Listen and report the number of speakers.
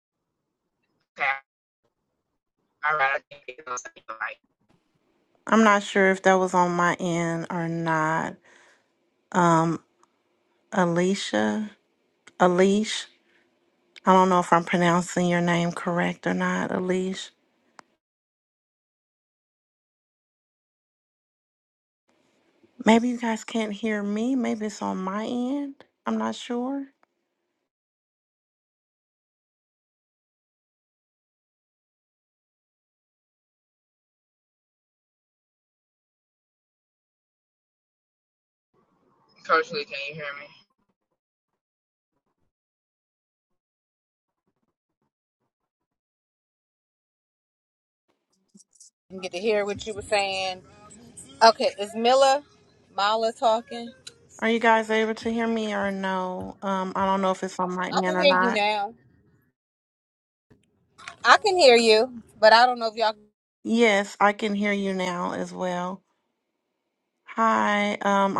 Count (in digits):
3